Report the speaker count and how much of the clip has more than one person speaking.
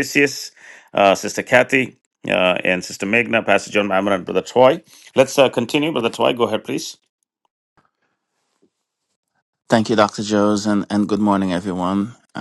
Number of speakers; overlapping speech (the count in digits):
2, no overlap